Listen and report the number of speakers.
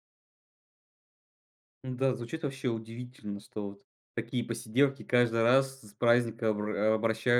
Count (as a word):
one